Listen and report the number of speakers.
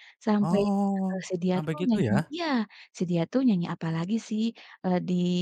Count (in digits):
2